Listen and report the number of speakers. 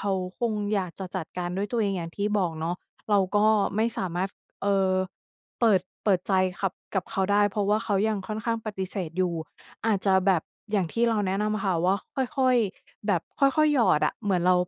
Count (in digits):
1